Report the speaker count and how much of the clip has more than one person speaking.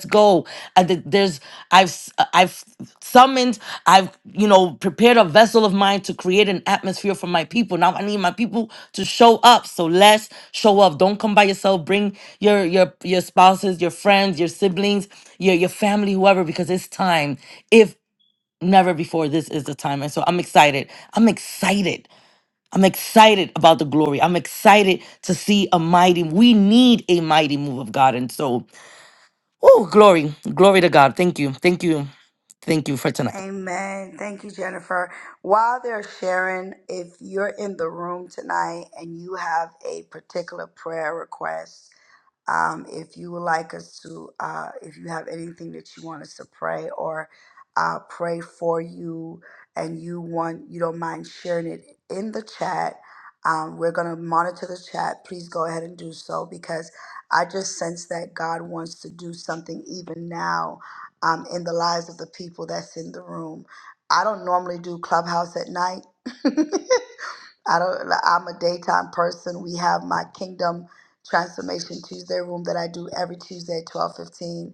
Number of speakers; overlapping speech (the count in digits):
2, under 1%